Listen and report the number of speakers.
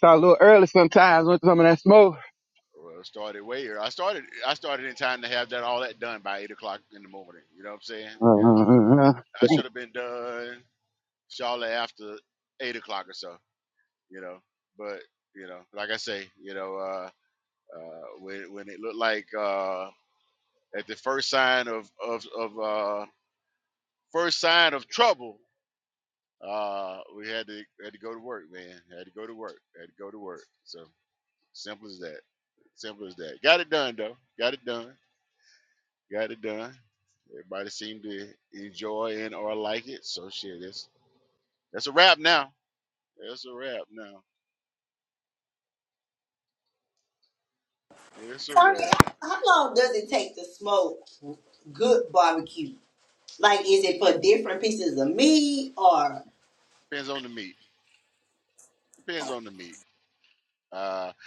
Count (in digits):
3